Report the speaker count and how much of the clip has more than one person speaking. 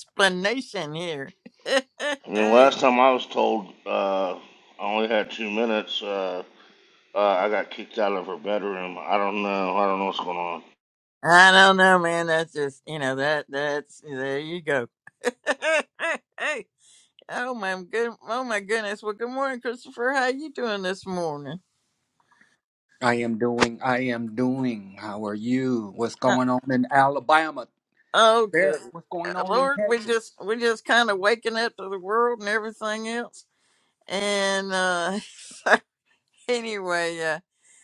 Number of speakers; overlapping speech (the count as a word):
three, about 4%